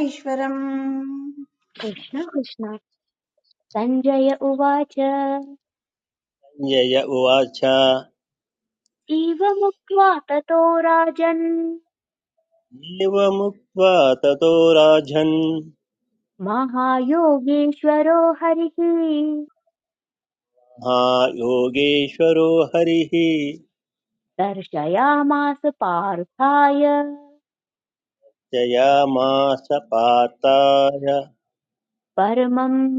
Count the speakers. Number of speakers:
3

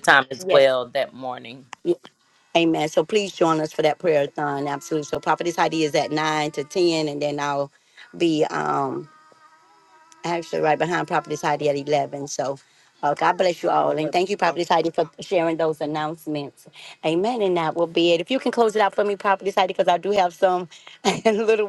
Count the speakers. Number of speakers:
2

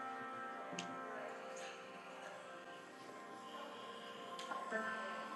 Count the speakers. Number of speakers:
0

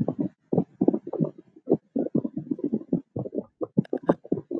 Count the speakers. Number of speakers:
0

